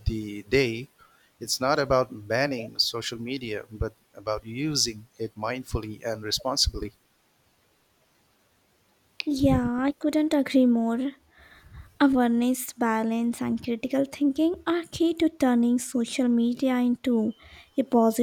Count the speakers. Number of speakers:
2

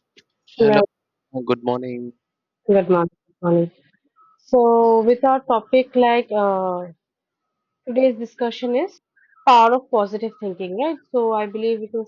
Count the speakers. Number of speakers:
2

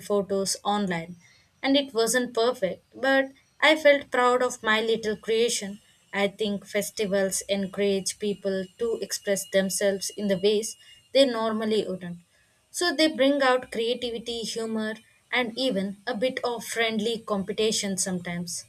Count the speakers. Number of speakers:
1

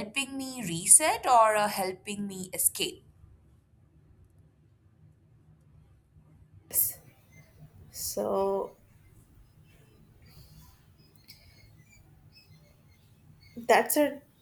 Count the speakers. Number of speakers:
2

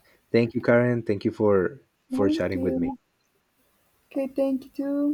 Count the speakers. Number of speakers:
2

